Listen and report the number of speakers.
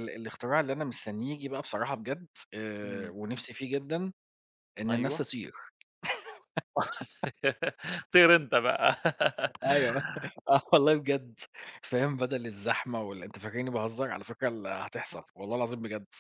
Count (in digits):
2